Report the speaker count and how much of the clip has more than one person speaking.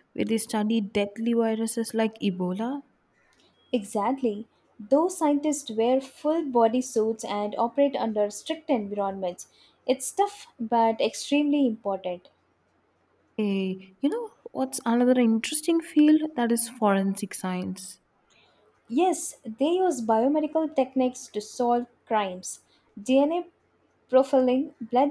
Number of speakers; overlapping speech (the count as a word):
two, no overlap